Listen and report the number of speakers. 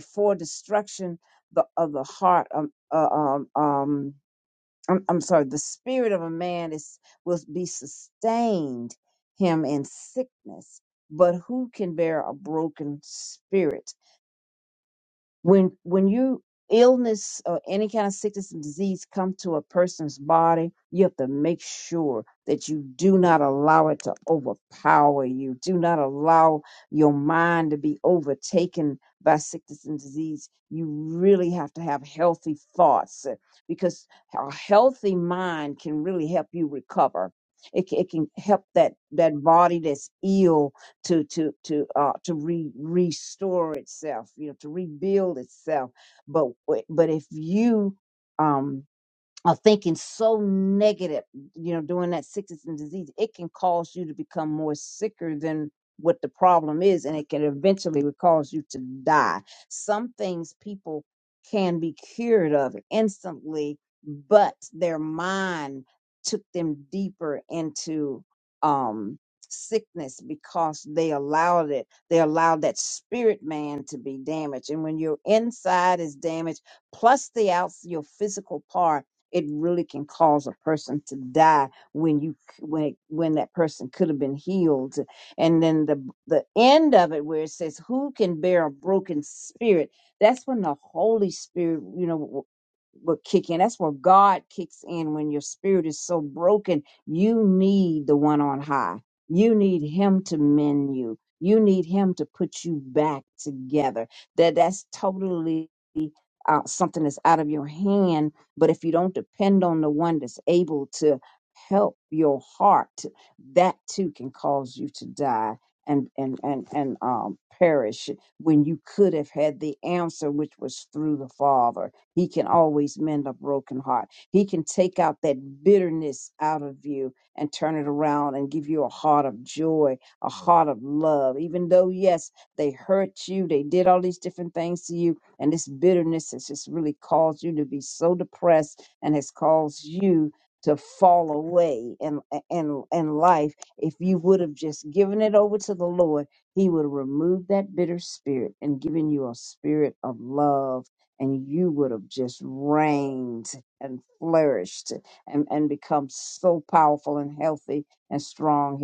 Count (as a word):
one